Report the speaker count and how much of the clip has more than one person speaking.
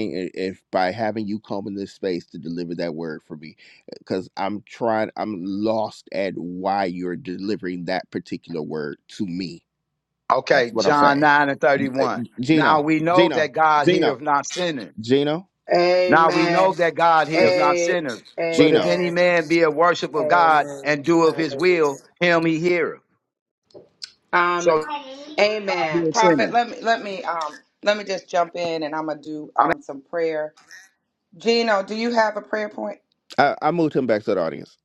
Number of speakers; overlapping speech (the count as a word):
three, about 18%